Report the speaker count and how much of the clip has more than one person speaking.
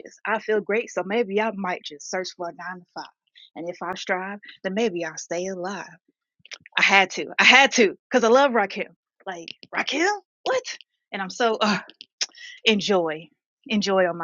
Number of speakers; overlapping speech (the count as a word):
one, no overlap